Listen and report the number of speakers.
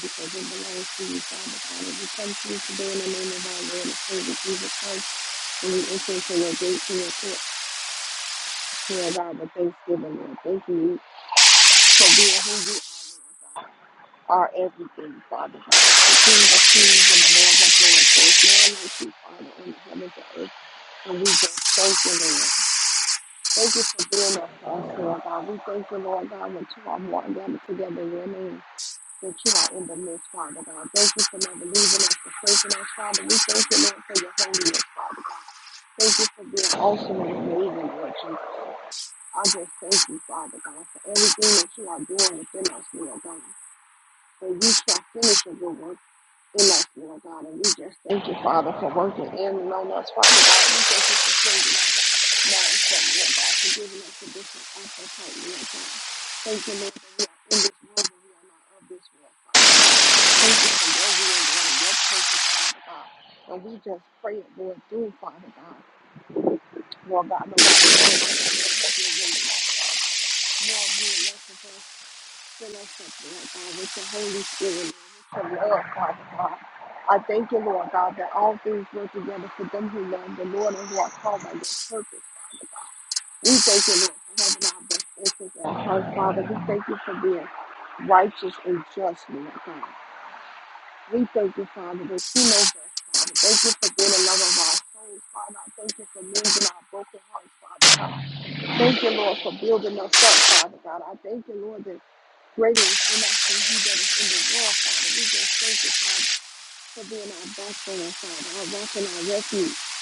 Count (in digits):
1